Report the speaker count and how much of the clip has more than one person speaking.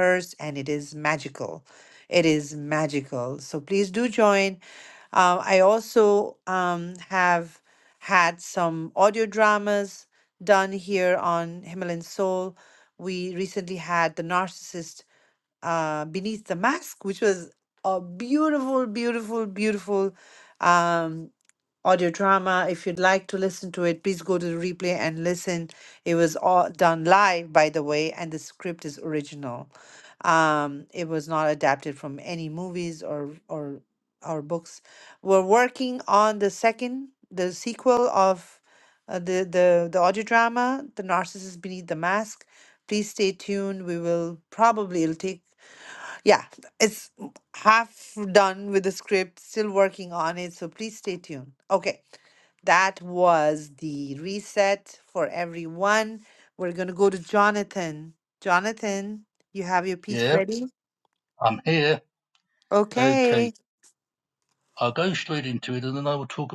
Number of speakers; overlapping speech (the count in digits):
2, about 1%